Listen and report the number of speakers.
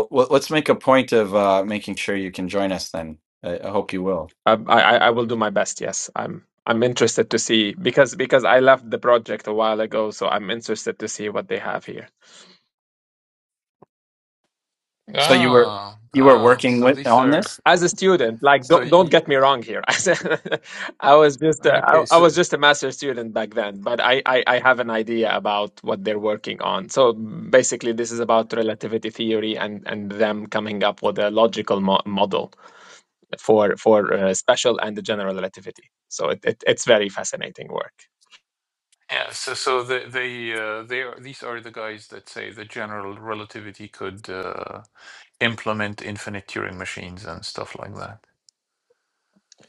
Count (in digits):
3